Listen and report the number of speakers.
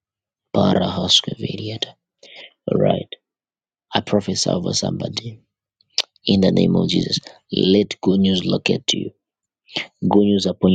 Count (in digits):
1